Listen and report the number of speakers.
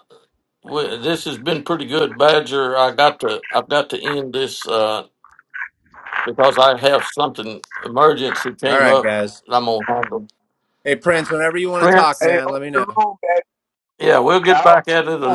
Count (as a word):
three